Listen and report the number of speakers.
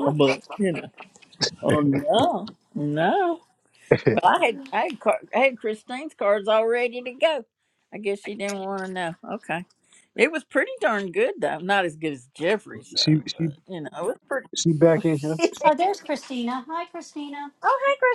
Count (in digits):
3